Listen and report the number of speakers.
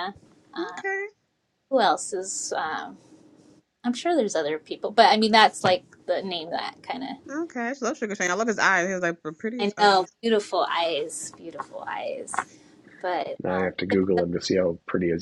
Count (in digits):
3